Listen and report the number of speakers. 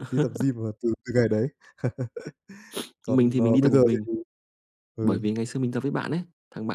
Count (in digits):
2